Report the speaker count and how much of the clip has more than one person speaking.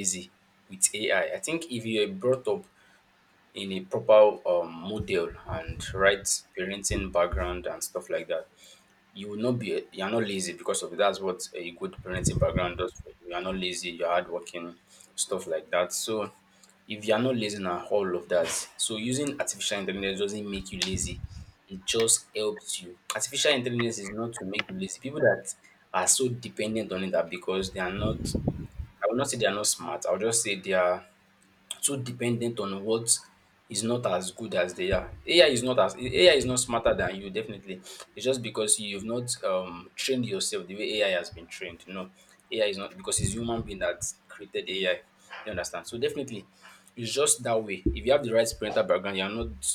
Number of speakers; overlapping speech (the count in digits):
1, no overlap